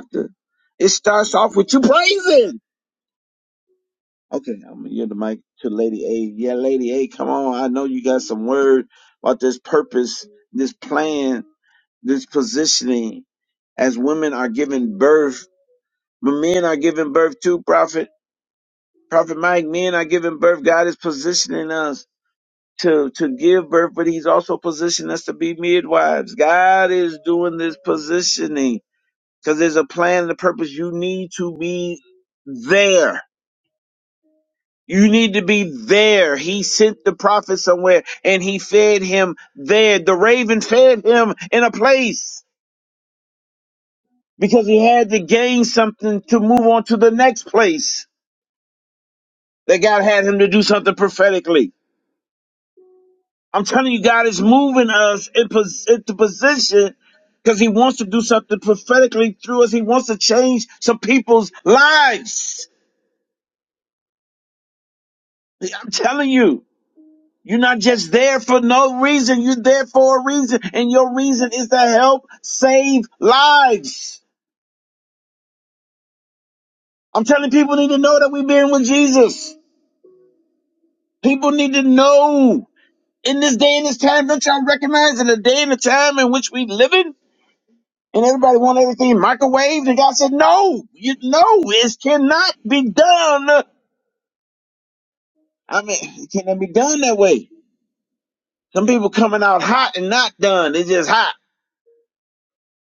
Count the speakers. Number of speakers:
1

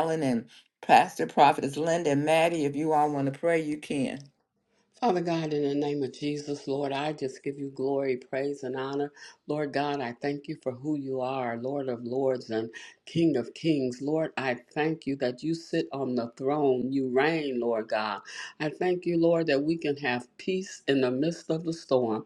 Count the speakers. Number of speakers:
2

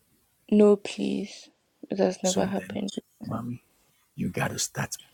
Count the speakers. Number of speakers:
2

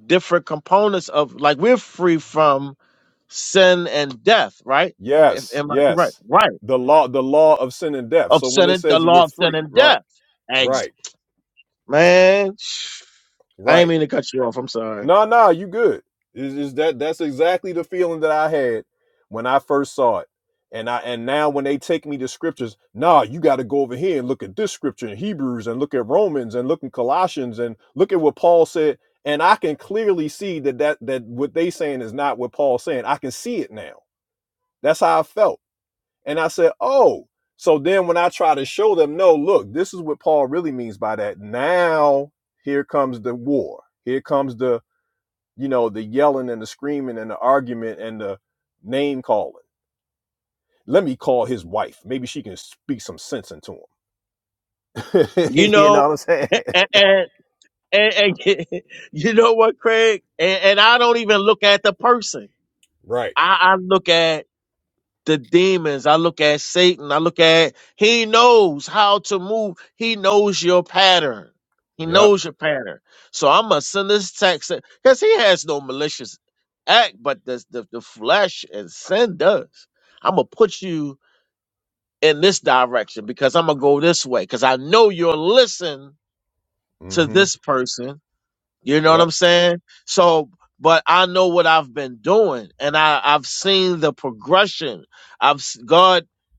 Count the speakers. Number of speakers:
2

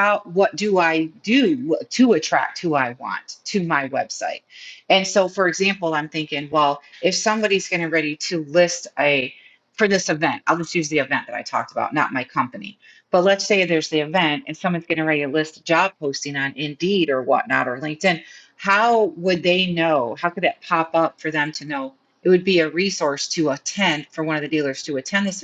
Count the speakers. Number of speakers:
1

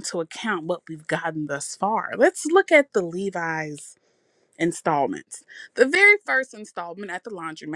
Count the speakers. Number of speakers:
1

